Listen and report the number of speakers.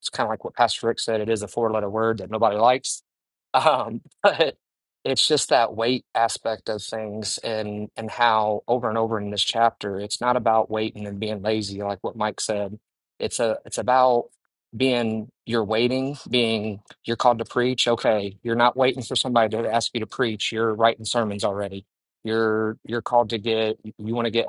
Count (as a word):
one